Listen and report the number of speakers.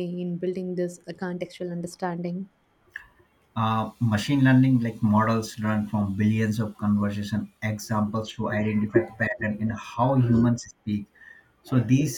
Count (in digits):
2